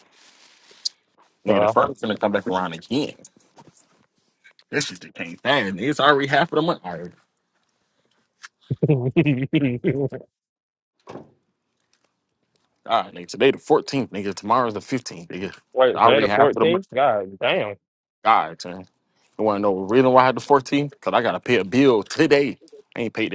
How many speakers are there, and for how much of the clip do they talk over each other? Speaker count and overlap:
2, about 5%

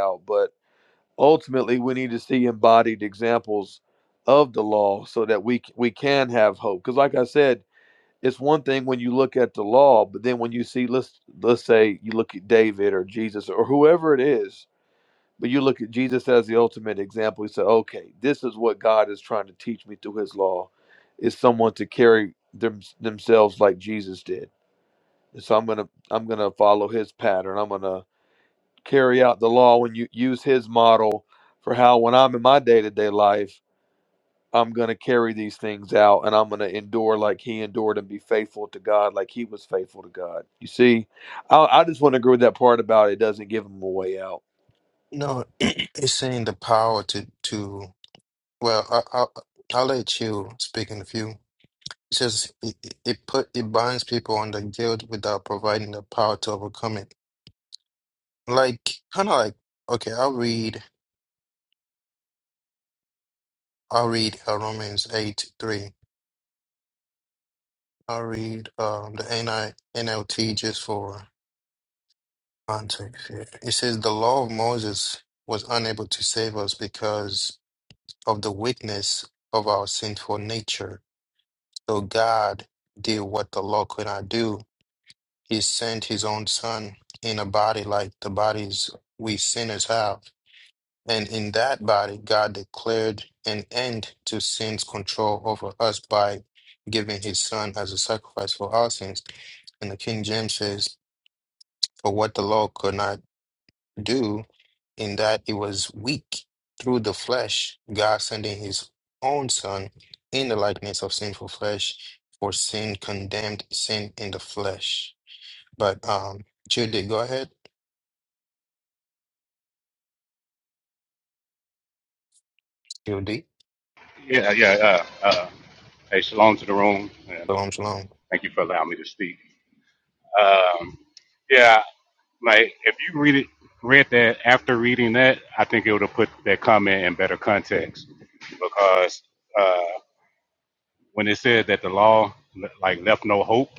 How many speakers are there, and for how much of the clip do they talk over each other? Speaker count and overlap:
3, no overlap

